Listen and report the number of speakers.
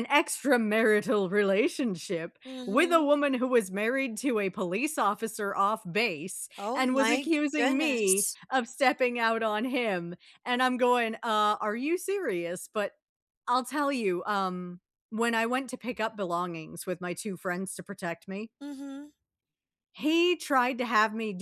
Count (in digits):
2